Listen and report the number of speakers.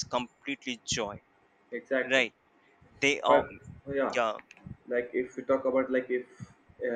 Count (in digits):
2